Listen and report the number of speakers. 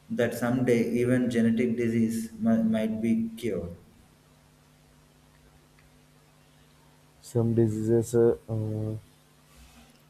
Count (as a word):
two